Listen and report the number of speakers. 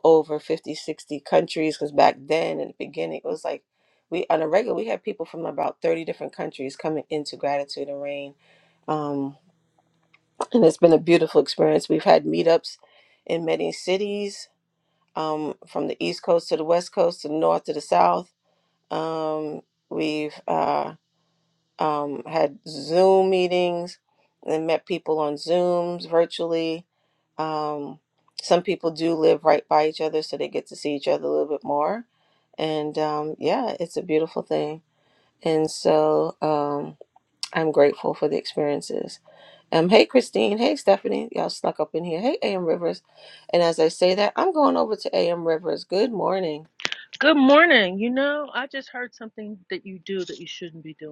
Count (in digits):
2